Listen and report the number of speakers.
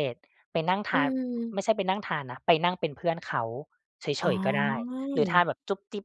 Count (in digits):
2